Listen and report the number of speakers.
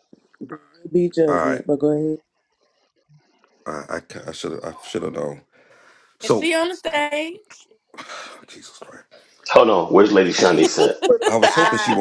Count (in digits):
4